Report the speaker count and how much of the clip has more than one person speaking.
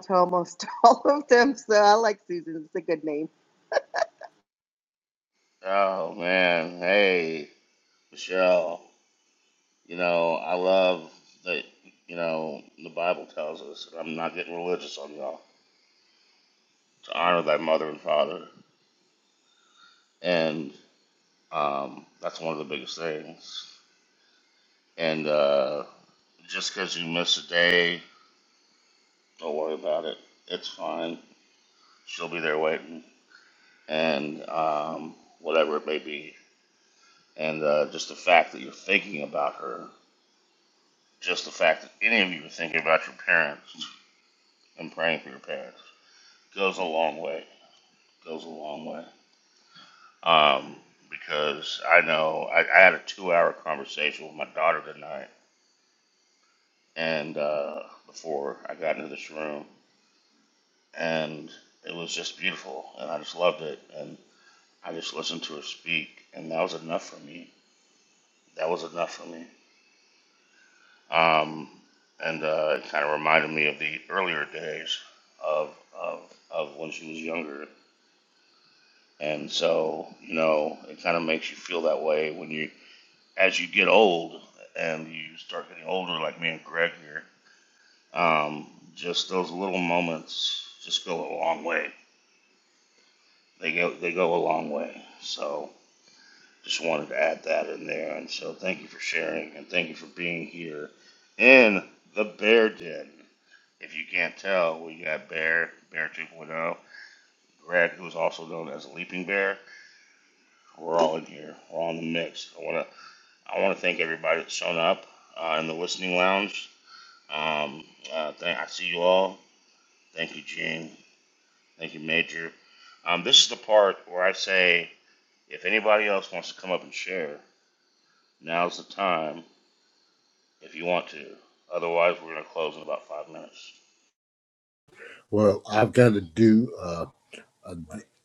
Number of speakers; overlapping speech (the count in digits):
3, no overlap